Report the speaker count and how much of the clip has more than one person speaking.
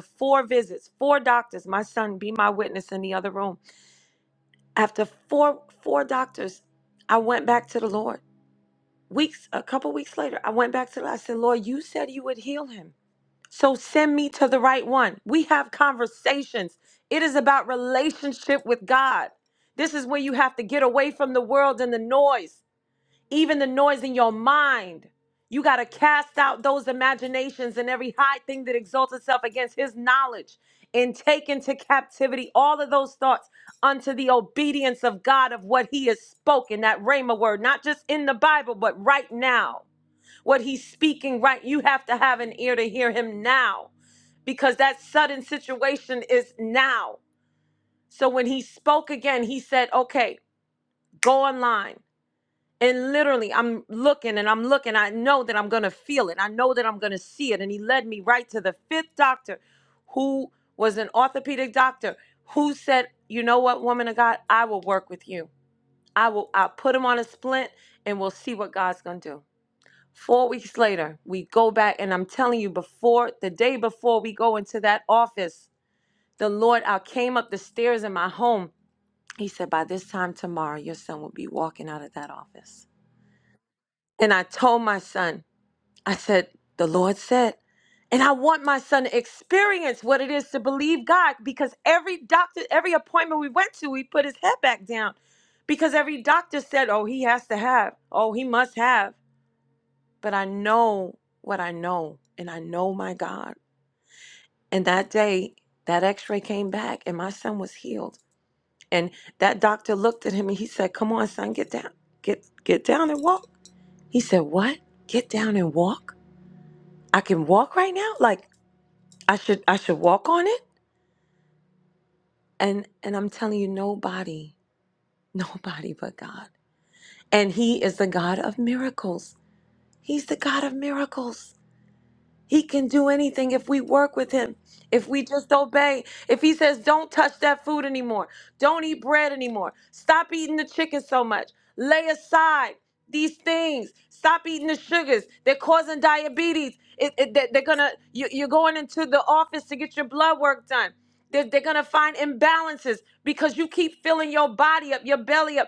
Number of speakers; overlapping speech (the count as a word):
one, no overlap